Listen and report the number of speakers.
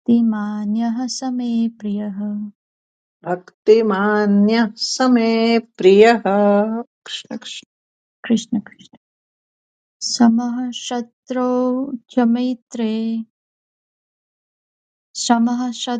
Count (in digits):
2